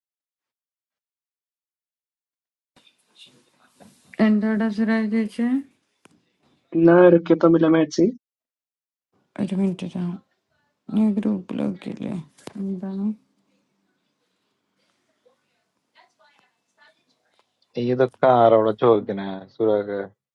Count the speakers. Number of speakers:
3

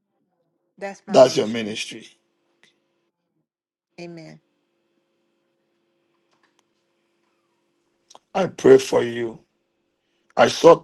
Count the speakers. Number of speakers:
2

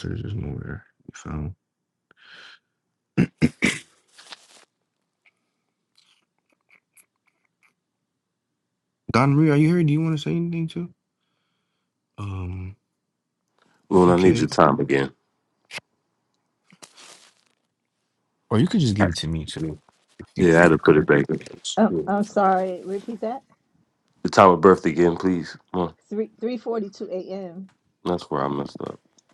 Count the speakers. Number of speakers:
3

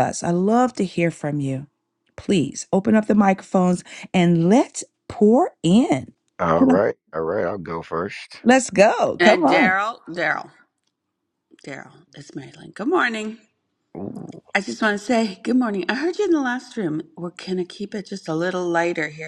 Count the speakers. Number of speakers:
3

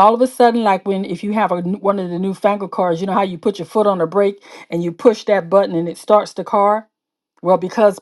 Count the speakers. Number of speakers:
1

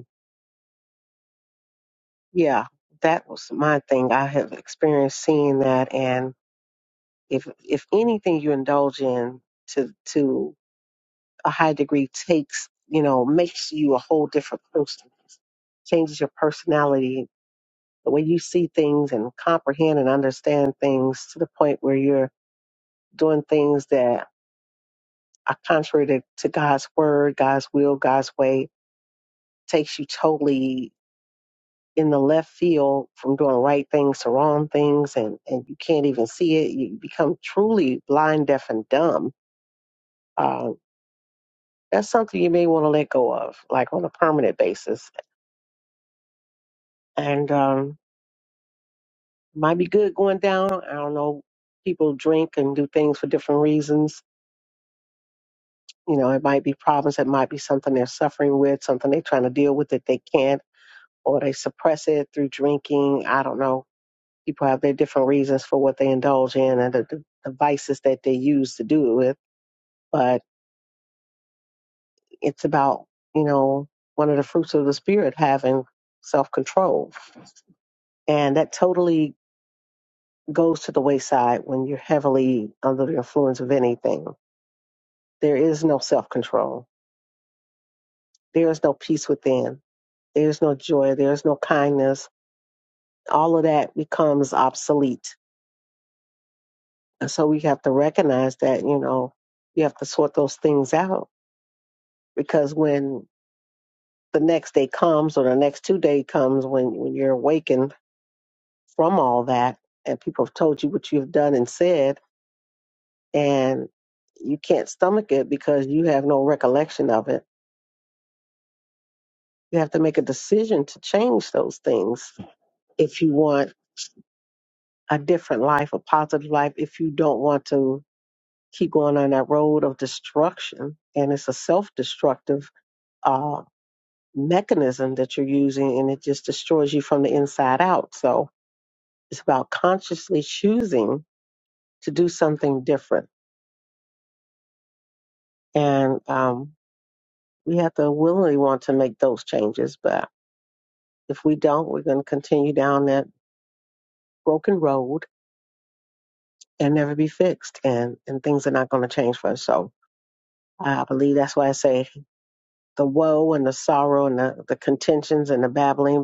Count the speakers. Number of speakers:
1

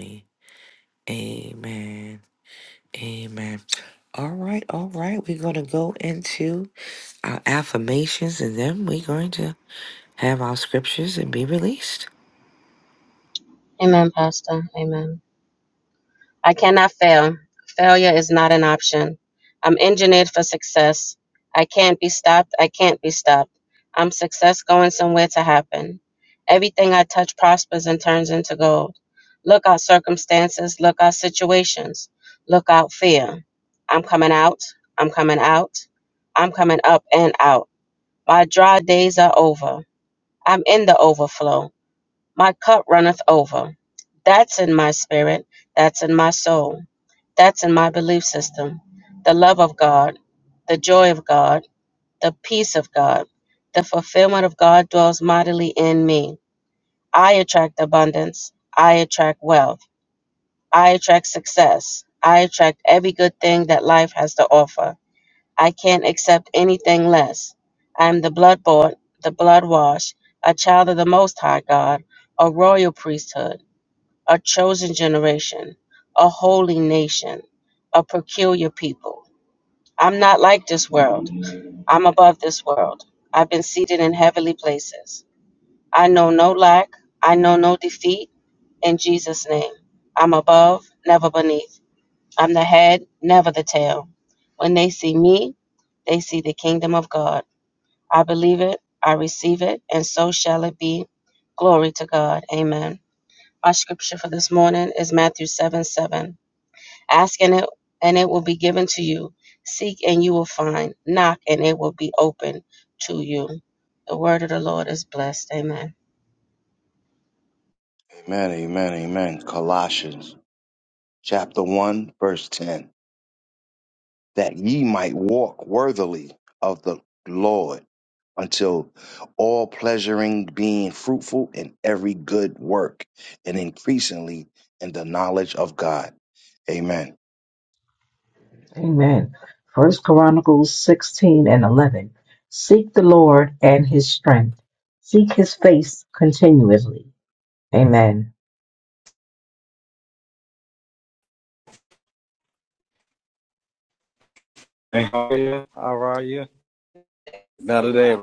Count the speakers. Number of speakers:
5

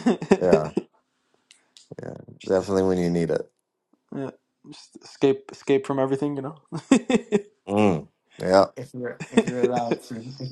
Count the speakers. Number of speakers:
3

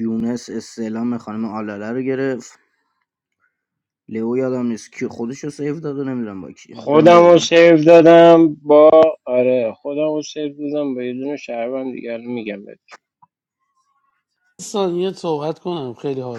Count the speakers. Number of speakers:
3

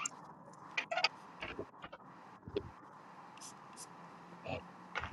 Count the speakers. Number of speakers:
0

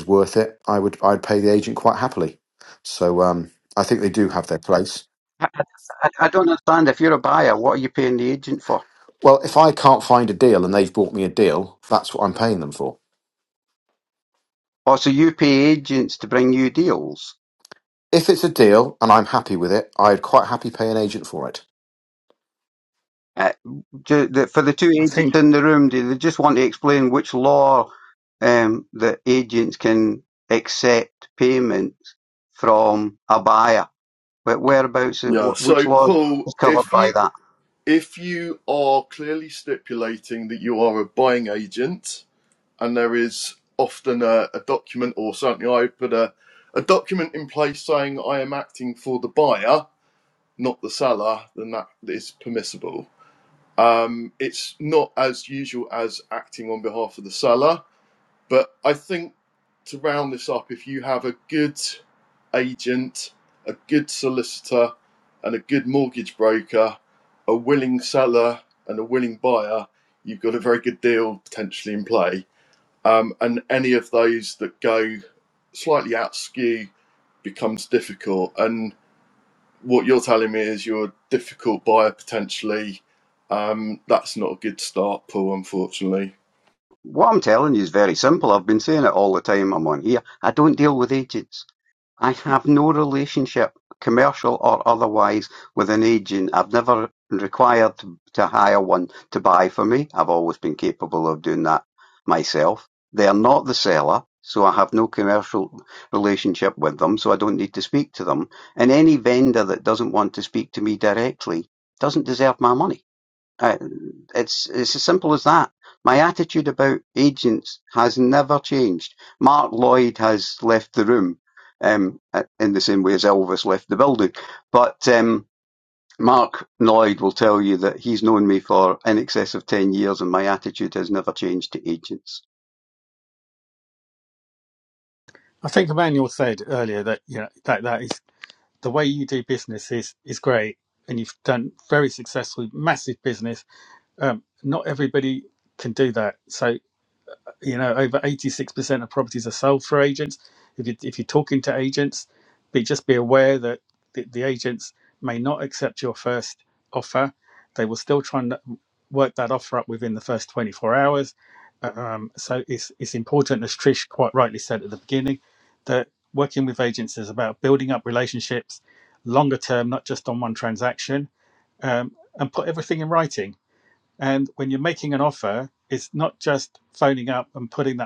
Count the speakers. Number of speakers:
4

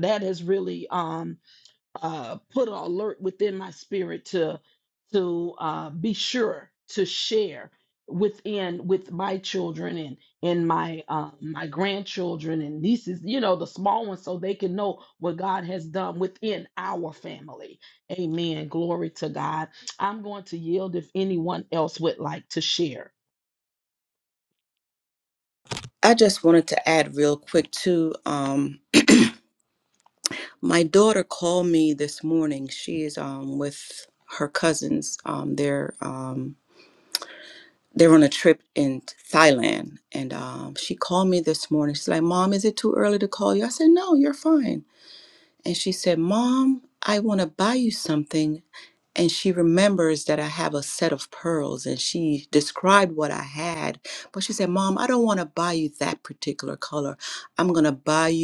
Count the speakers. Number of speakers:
2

